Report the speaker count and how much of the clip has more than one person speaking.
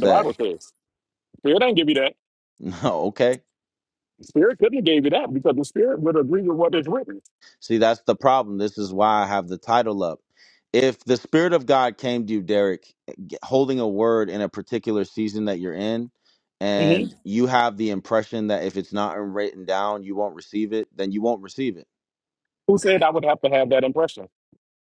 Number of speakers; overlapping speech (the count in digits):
2, about 3%